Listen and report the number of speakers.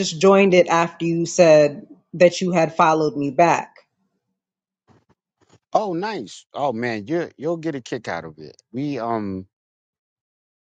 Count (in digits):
2